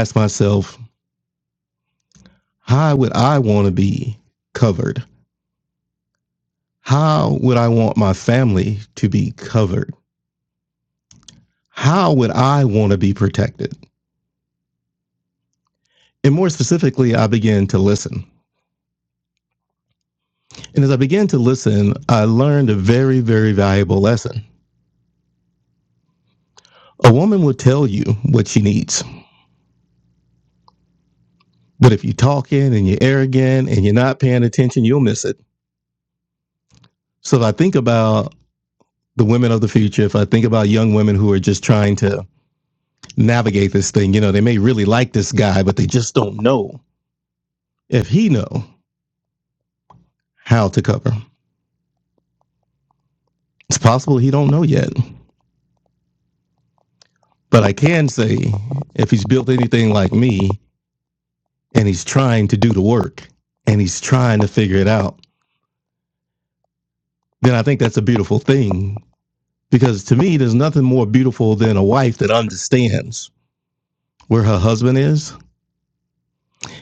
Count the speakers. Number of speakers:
1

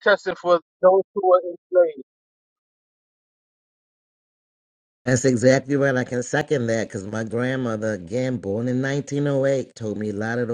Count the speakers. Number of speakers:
2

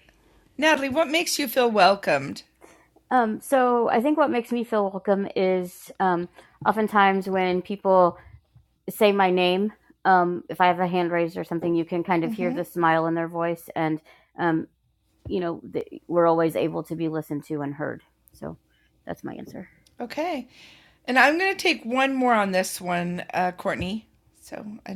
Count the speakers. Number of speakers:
2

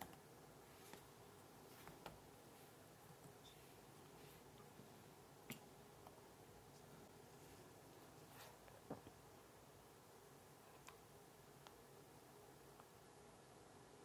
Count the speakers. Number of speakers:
0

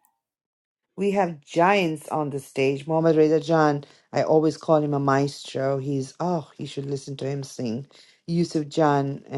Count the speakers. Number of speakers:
1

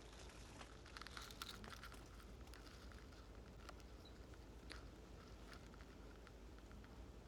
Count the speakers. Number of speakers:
0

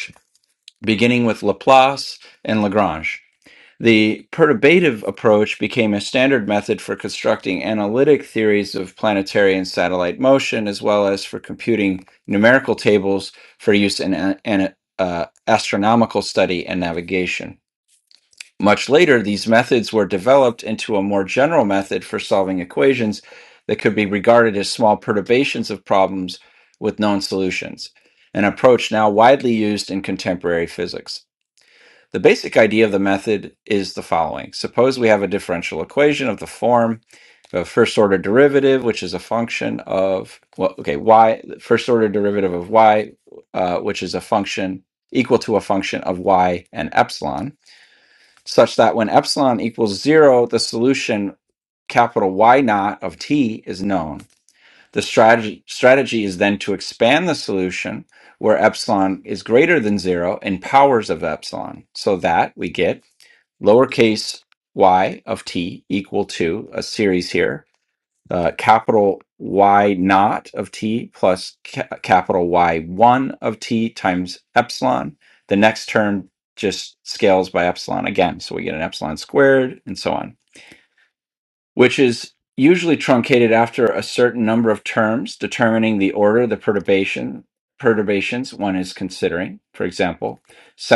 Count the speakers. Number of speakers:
1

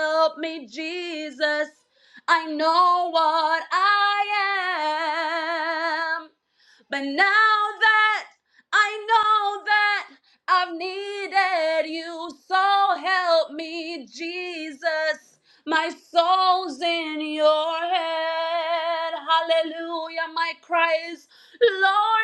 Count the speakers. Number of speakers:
1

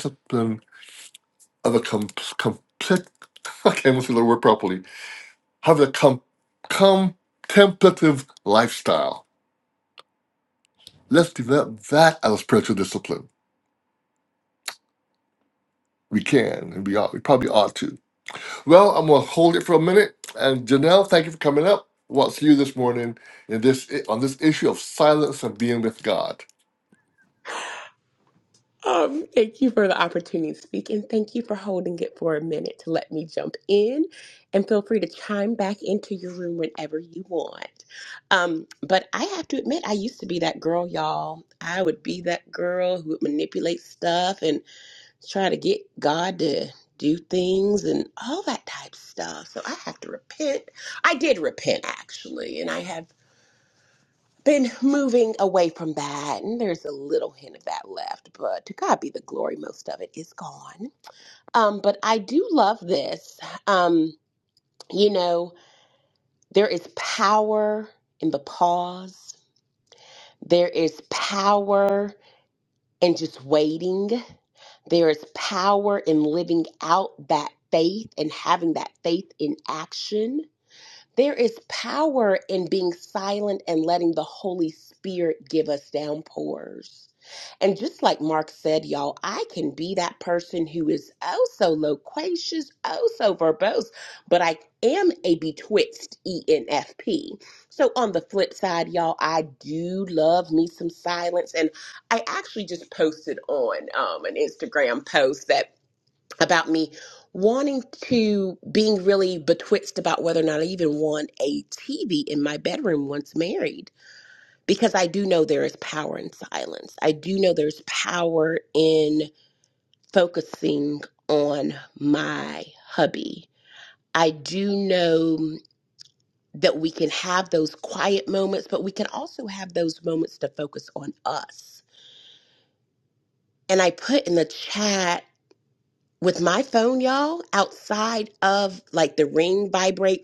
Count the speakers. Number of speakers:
2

